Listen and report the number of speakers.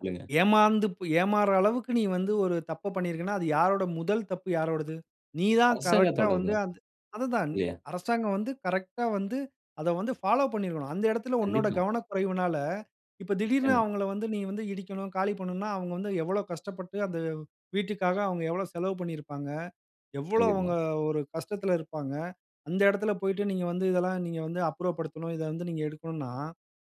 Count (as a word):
two